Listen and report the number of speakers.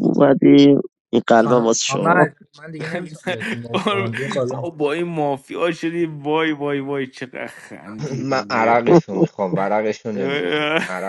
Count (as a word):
four